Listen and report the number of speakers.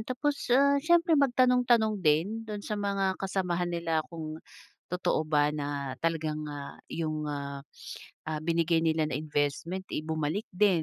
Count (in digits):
1